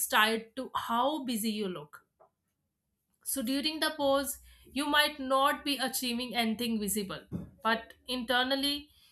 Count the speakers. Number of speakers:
1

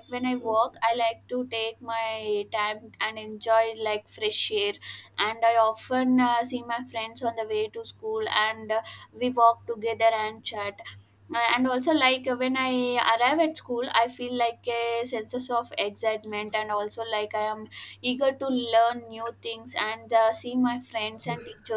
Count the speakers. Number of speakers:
1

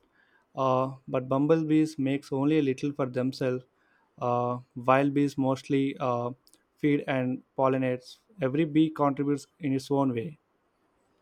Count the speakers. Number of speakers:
1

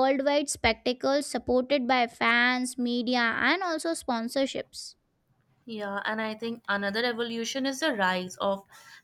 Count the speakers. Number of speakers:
2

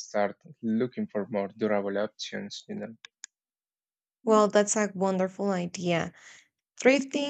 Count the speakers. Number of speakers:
2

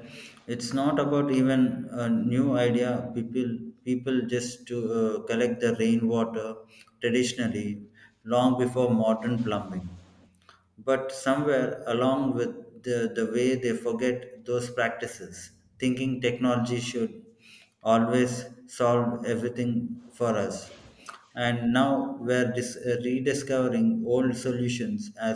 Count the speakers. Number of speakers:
1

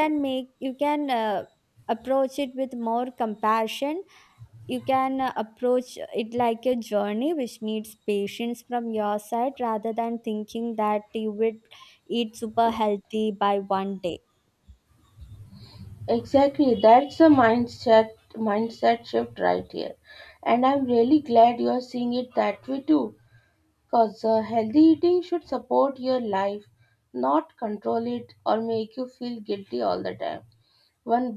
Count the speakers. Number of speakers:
2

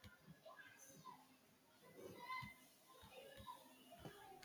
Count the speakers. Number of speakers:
0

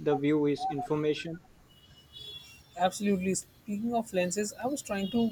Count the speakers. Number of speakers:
2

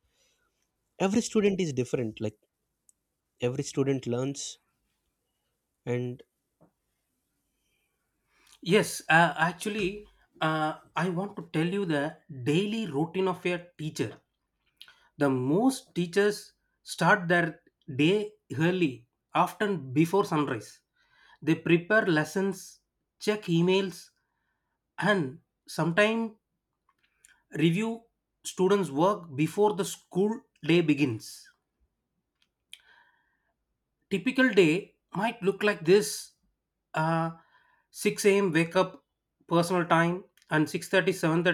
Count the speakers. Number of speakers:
2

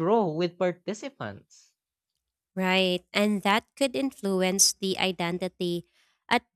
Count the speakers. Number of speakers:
2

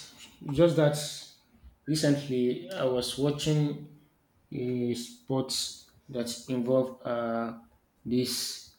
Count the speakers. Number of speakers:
1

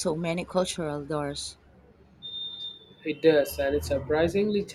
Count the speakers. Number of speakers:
2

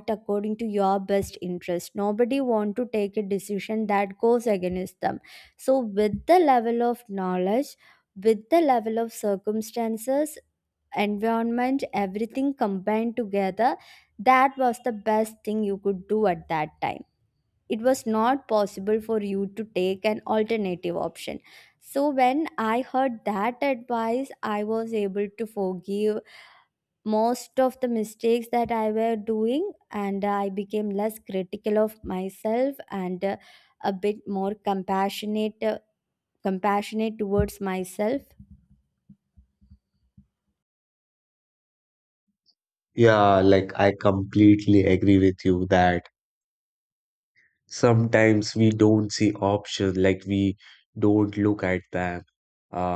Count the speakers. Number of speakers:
2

